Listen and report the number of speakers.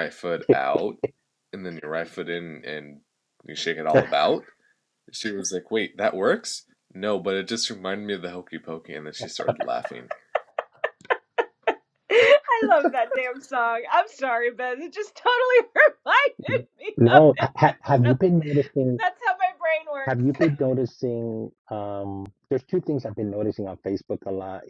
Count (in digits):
3